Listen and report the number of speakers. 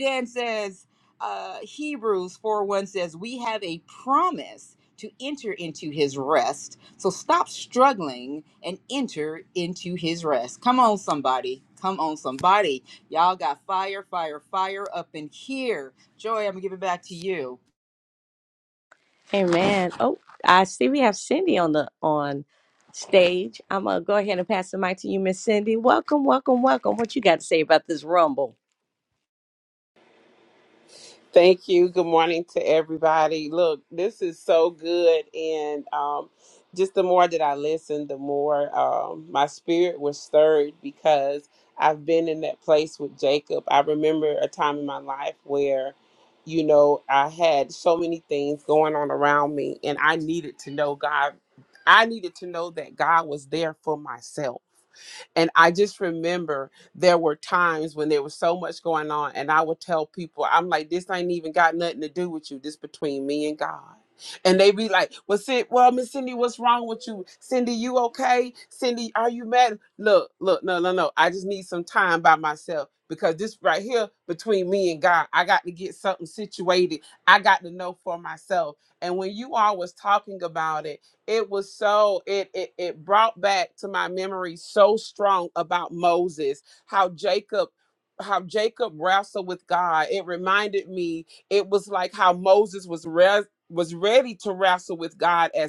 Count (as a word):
three